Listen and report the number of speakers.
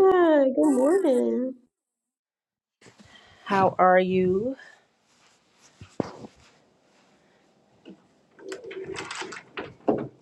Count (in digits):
2